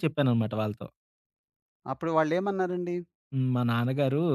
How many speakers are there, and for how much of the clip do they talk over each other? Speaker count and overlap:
2, no overlap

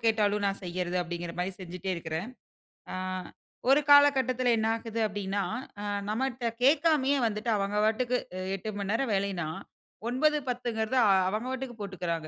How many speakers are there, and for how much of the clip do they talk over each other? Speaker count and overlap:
1, no overlap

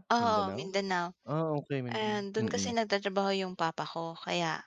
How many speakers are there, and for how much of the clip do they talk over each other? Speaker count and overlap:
2, about 30%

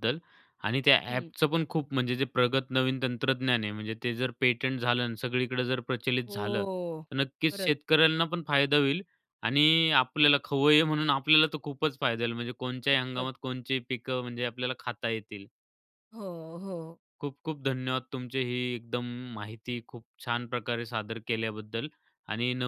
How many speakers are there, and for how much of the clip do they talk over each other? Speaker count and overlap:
2, about 5%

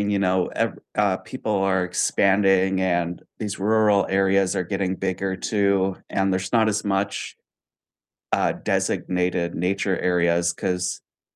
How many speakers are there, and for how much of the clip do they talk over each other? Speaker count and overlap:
1, no overlap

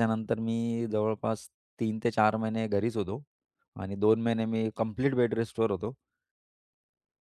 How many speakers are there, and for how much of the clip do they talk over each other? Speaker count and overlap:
1, no overlap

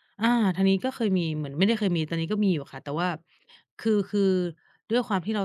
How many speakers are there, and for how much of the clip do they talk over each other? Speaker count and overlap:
1, no overlap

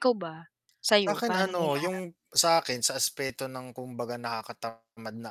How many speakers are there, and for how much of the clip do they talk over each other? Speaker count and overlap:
2, about 18%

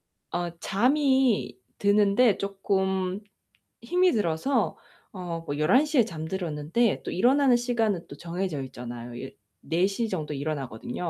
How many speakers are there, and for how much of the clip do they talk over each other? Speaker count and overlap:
1, no overlap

